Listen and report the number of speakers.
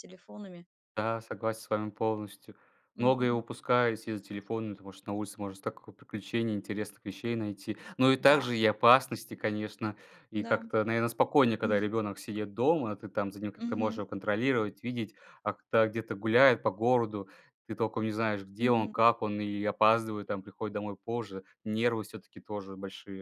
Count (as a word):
two